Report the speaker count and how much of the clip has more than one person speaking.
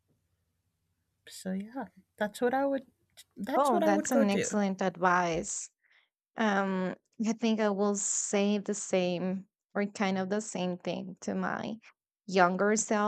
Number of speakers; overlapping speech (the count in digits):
2, about 7%